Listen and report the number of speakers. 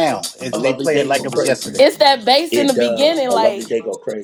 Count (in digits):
3